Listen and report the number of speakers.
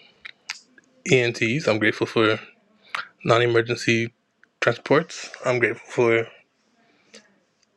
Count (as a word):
one